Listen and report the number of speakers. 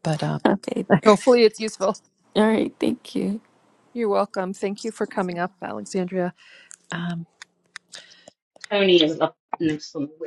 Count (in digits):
3